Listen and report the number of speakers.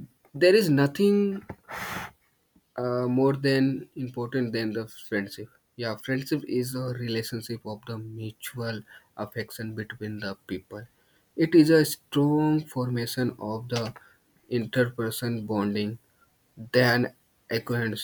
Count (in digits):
1